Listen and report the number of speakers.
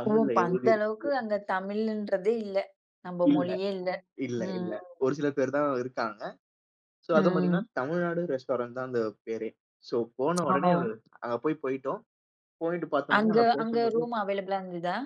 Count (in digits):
2